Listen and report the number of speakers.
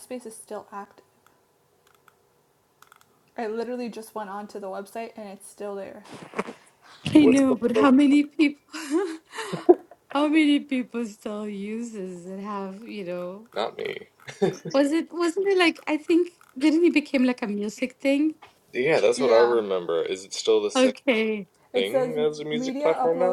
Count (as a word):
three